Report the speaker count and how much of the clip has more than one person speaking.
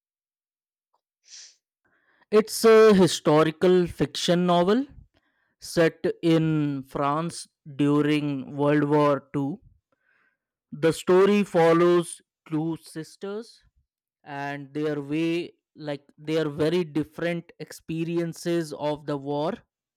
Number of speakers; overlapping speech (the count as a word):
one, no overlap